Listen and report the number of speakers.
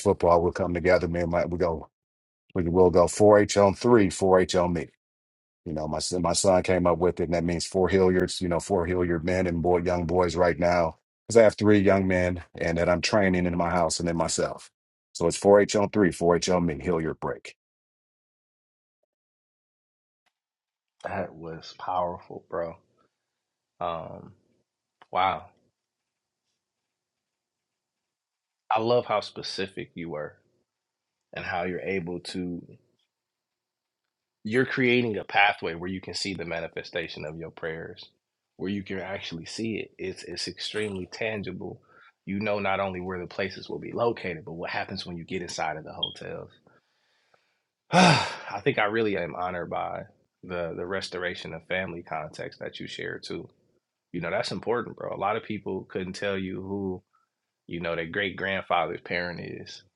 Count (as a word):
two